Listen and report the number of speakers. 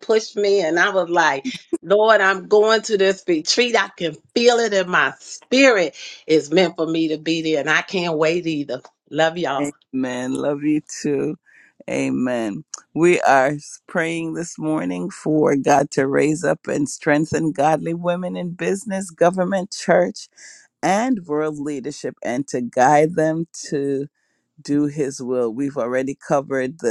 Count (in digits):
2